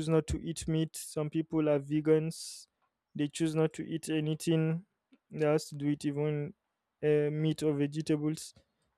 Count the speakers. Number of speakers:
one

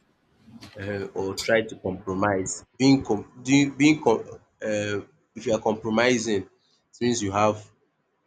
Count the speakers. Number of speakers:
one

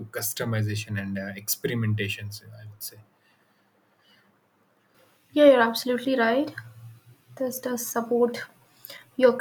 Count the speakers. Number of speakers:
two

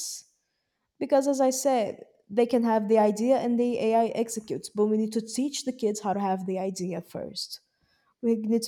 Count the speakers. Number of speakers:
one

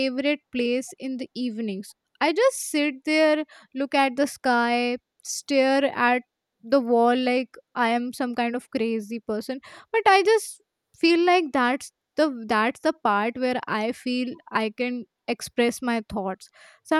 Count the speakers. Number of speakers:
one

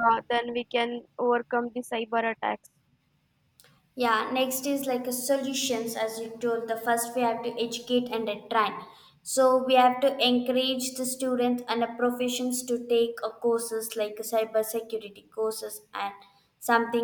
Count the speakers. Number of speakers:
two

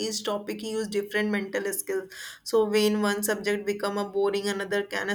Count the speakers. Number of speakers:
one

